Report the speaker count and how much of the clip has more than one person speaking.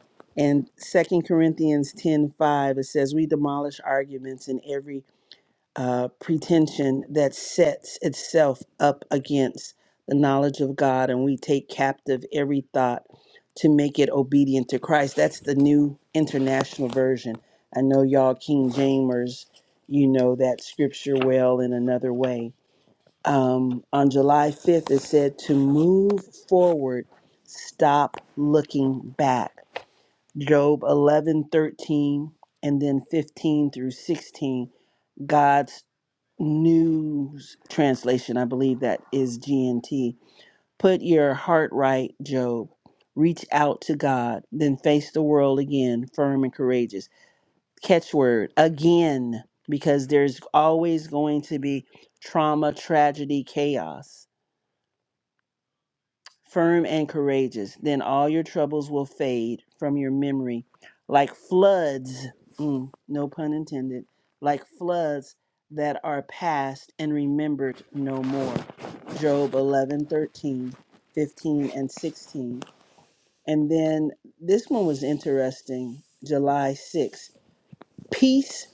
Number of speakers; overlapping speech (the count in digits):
1, no overlap